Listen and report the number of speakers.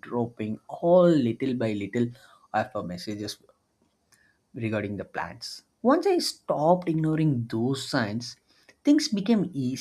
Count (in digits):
1